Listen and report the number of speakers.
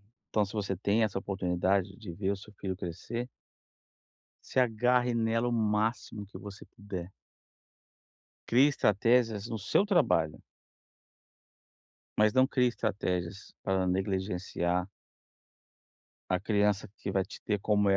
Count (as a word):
one